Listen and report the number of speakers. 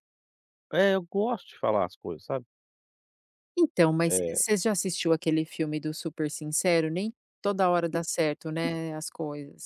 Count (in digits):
2